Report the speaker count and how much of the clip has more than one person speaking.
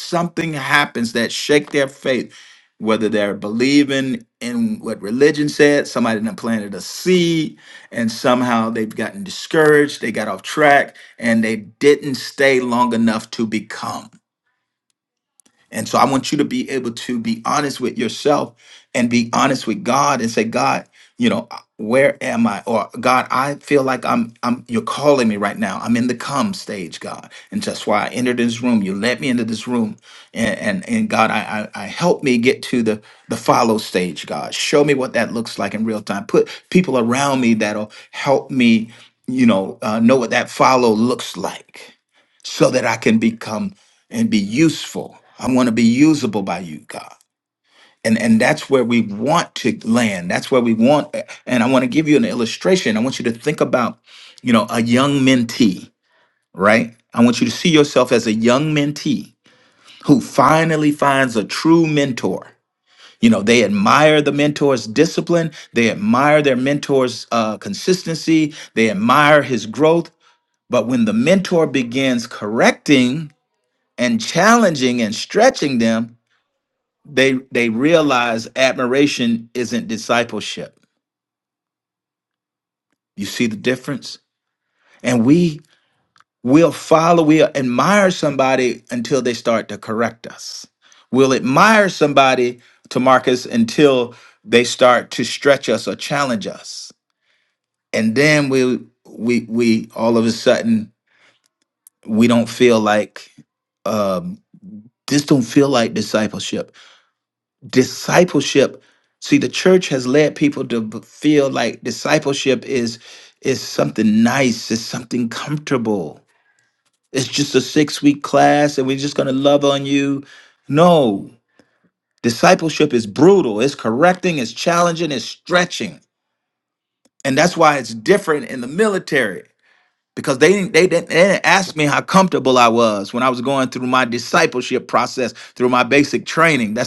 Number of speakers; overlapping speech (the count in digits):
1, no overlap